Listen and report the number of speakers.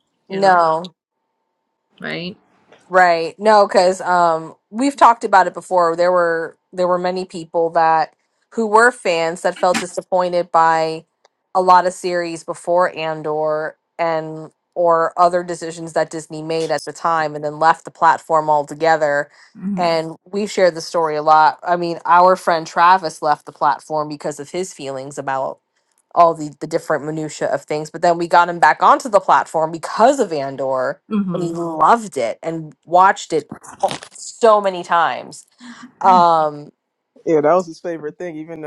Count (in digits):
3